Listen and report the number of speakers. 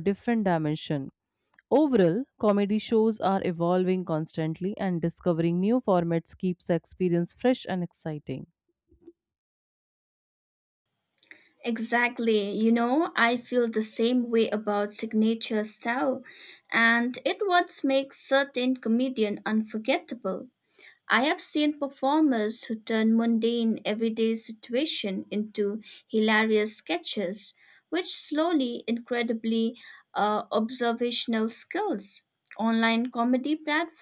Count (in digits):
2